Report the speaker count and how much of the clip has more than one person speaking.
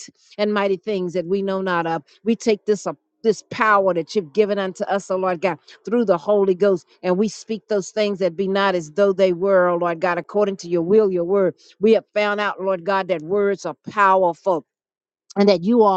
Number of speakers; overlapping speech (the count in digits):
1, no overlap